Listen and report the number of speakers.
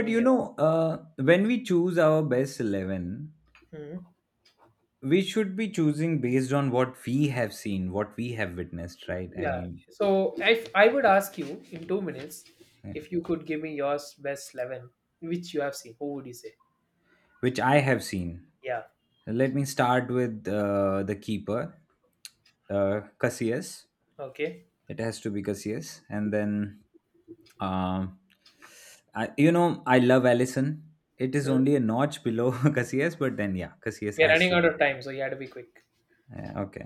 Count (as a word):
two